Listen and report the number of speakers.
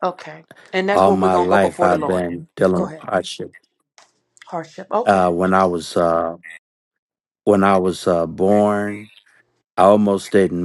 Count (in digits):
2